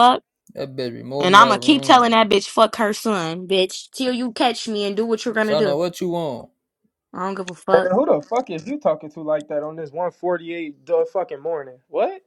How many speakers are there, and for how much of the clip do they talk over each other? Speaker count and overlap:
three, about 10%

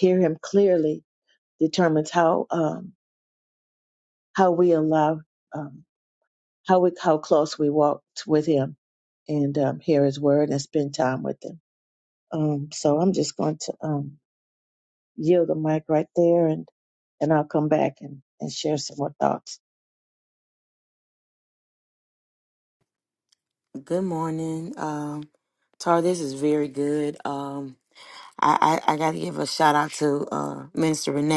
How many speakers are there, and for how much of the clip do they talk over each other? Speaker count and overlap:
two, no overlap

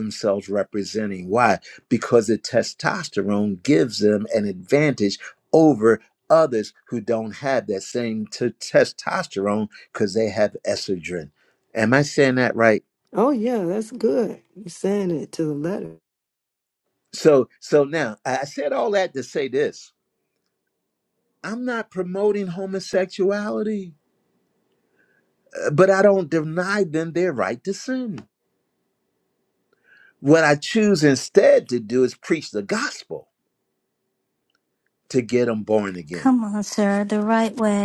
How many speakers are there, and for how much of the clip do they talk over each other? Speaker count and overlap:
three, under 1%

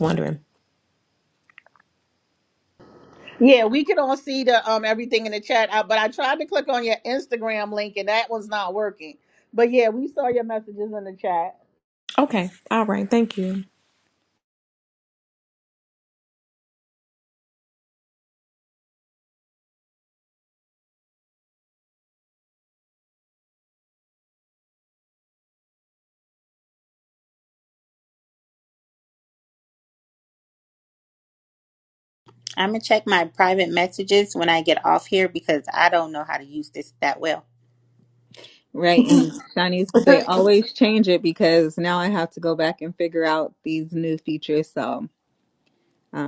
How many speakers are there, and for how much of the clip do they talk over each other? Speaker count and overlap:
four, no overlap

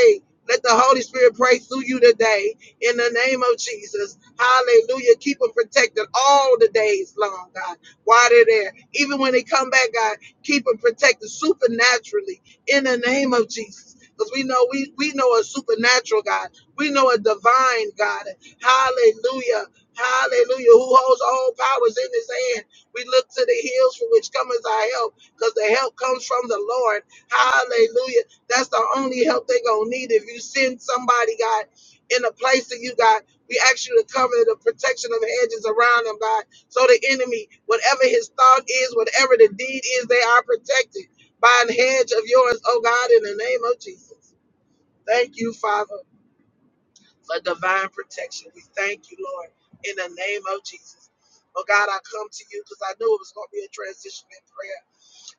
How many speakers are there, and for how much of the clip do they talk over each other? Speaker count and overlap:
one, no overlap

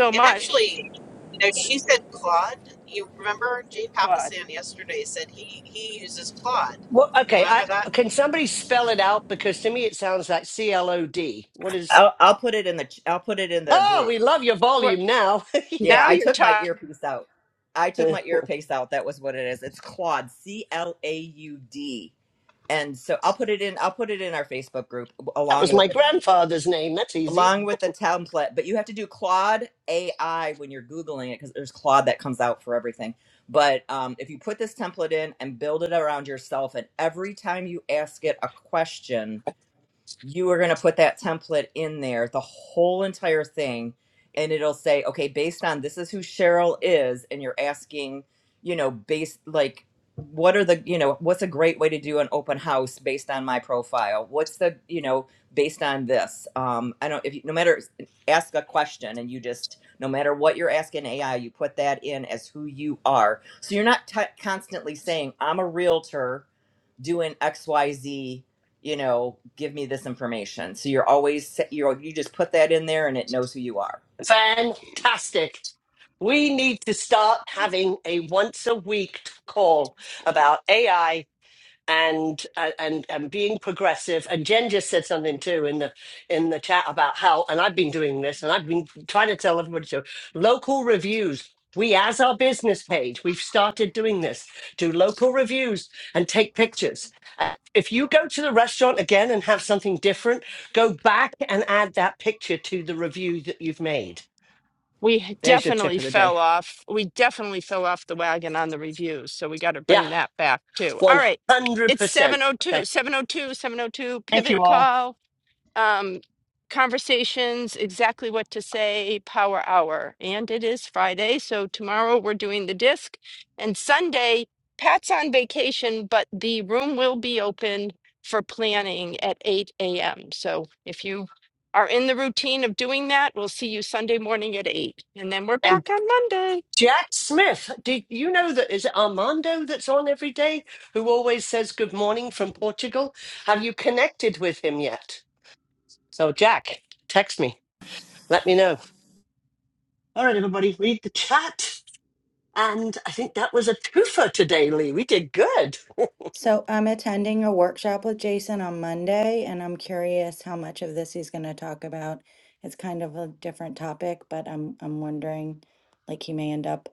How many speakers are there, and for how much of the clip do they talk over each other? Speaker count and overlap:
five, about 4%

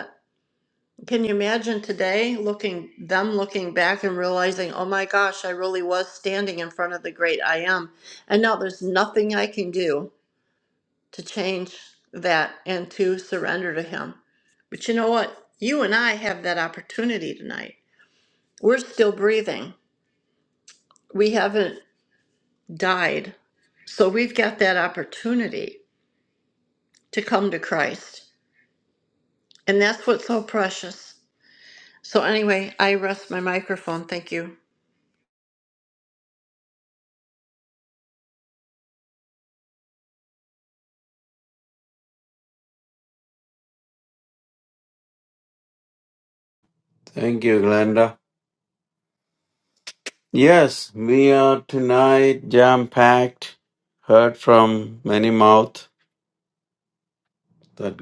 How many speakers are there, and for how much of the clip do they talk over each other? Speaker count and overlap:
two, no overlap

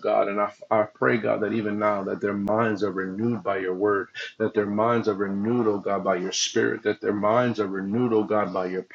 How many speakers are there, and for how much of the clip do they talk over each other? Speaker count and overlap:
one, no overlap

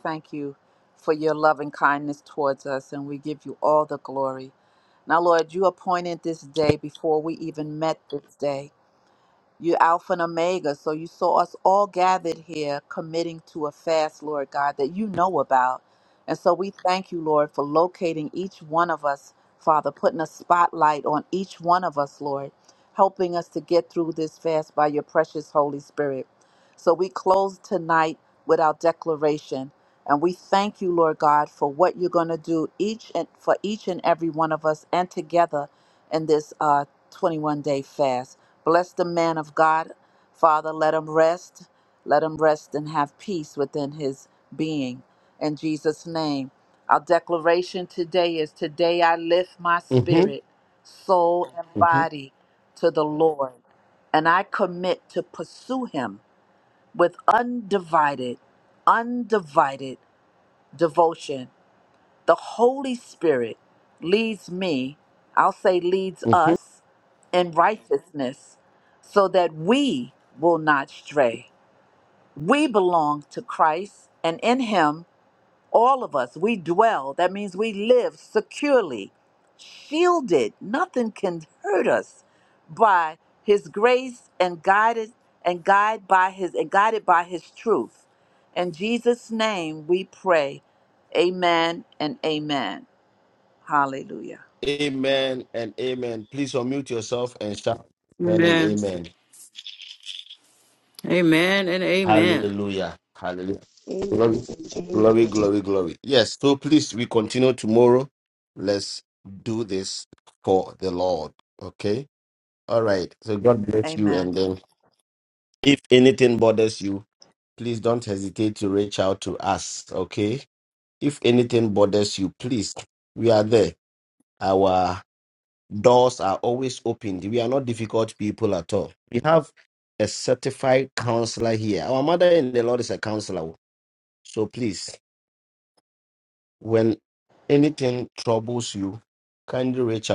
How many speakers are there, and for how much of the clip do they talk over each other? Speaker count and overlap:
three, about 2%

